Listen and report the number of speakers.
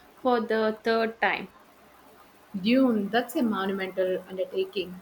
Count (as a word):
two